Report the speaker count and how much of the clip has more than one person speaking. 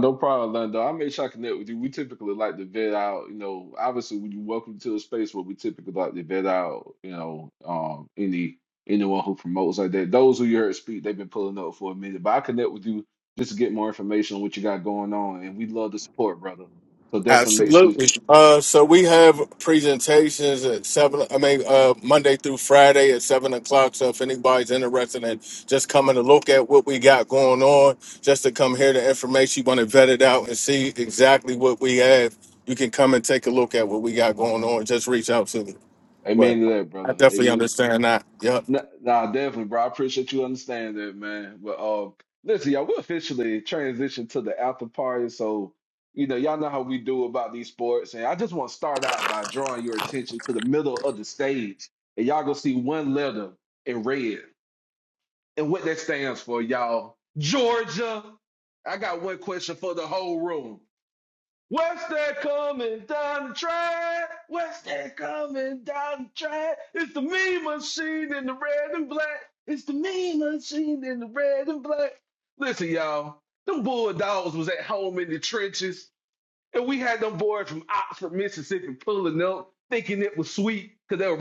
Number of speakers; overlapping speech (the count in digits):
2, about 2%